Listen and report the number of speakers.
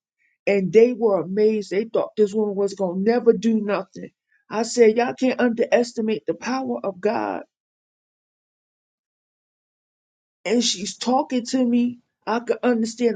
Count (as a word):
one